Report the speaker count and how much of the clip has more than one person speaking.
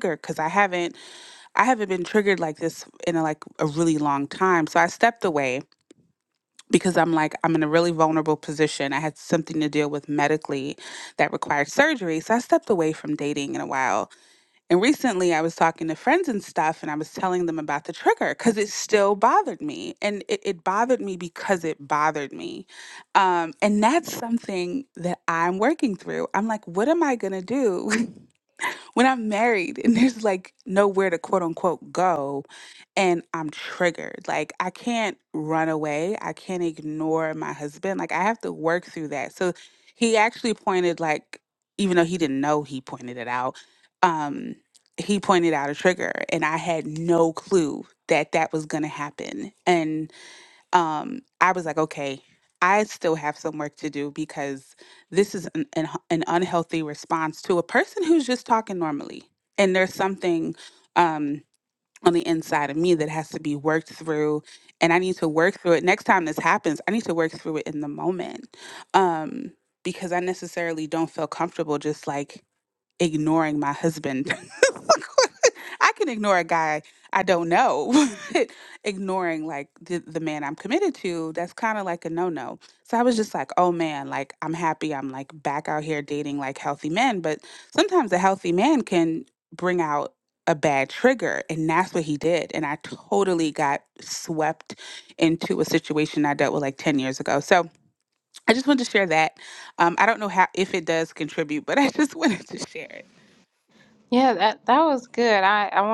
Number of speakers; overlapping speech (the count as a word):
two, no overlap